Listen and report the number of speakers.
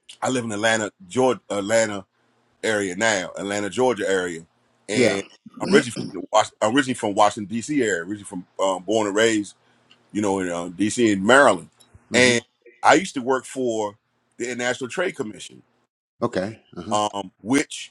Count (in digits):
2